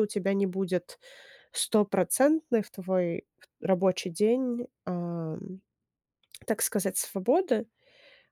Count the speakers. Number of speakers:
one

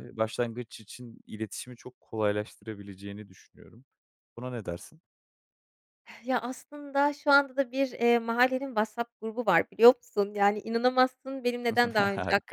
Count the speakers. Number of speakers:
two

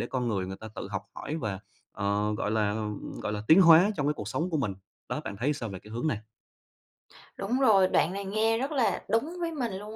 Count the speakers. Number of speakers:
two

